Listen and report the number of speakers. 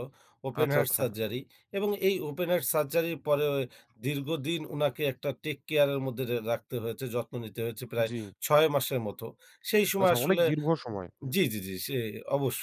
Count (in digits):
2